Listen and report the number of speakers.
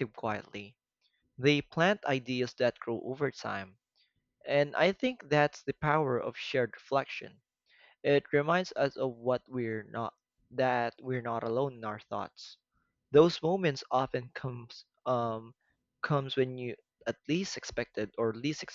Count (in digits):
1